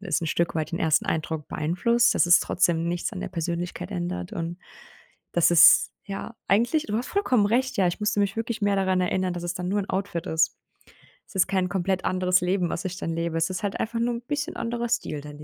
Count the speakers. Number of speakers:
one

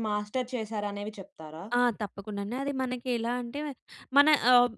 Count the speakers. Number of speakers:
two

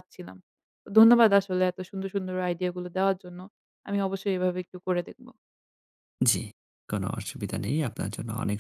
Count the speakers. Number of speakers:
two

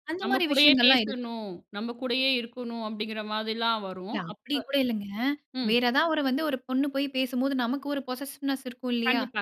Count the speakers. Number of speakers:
two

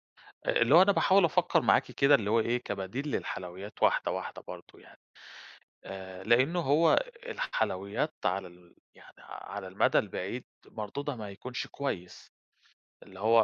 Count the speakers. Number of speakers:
one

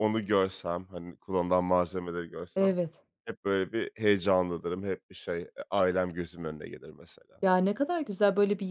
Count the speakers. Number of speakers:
two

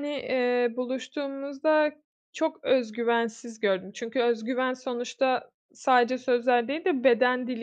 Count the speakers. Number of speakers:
one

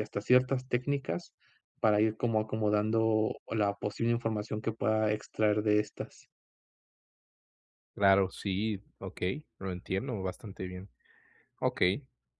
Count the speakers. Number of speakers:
two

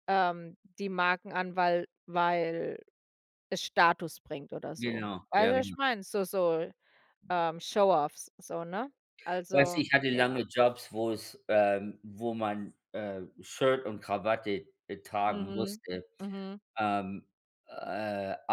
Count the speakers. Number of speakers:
two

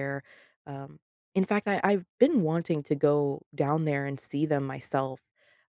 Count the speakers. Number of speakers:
one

